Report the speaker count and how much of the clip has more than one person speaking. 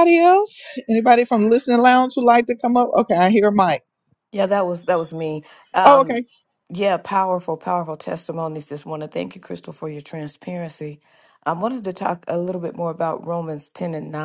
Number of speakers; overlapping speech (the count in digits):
2, about 3%